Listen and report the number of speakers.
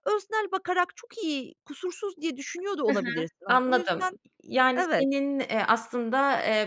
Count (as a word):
two